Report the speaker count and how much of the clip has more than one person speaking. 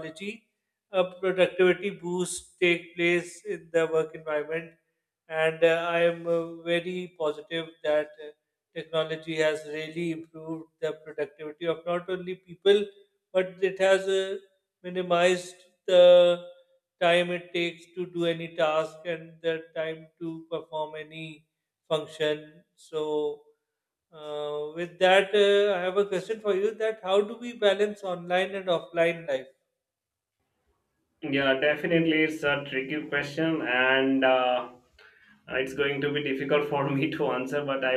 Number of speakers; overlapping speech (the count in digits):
2, no overlap